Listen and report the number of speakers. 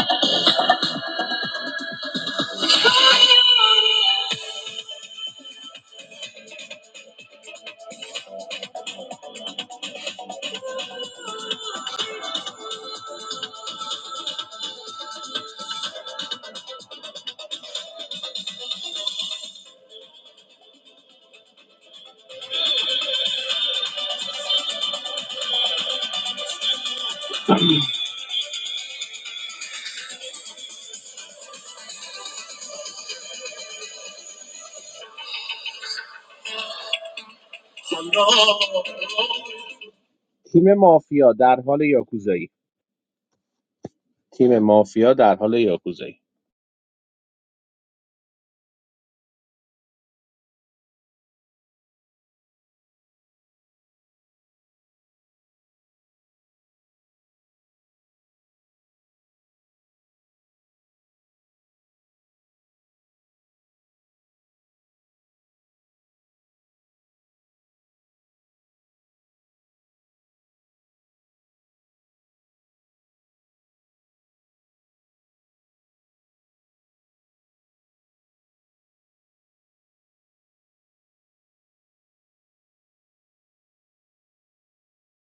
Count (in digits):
1